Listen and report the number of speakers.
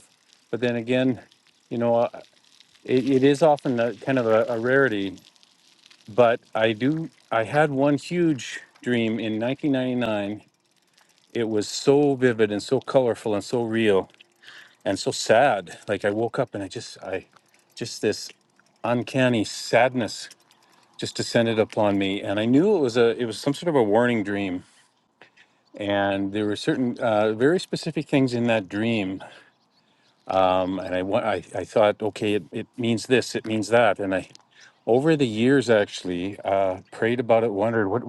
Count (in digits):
1